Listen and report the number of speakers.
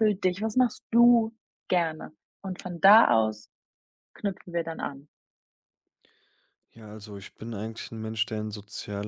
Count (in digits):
2